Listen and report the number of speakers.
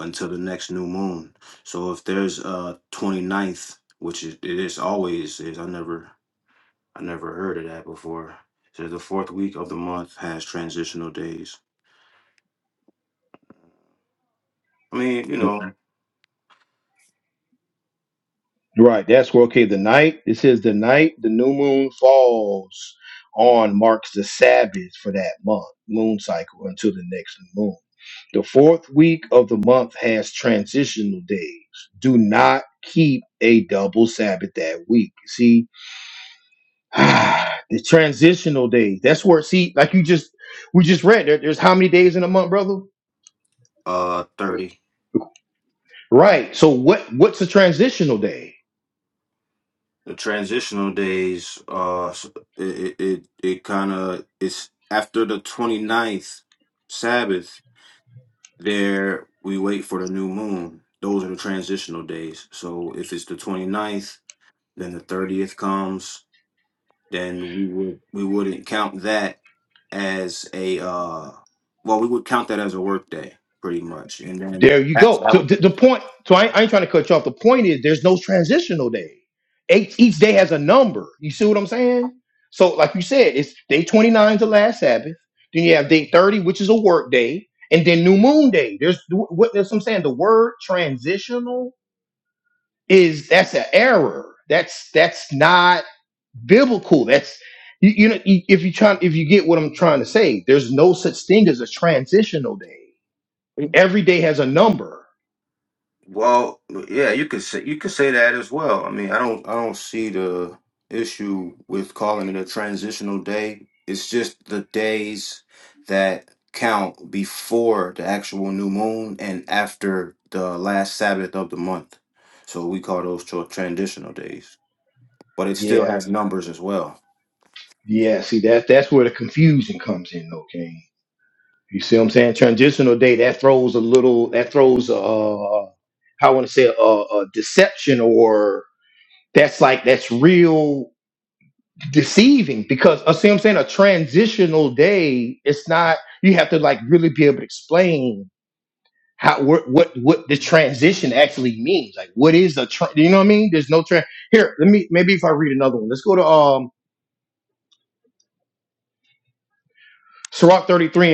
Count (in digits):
2